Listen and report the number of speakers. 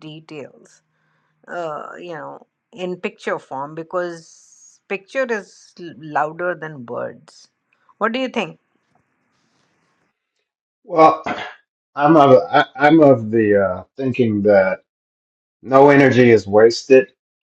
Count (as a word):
two